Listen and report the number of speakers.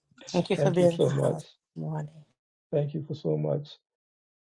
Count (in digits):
2